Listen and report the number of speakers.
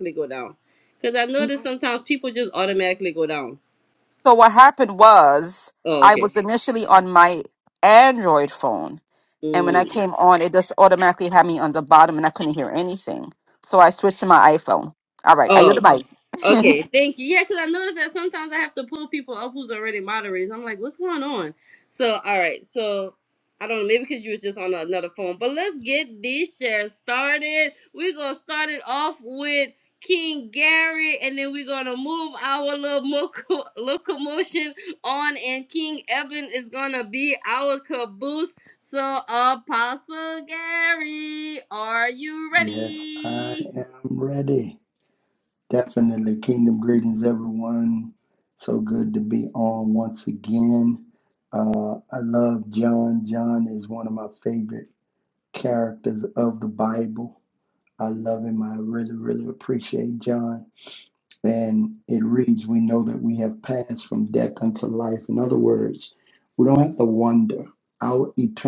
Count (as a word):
three